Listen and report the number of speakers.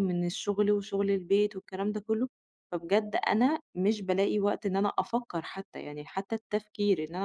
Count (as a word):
one